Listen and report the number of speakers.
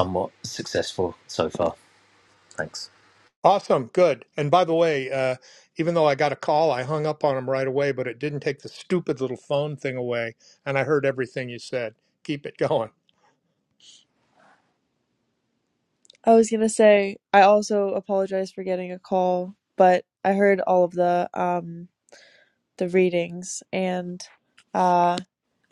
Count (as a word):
three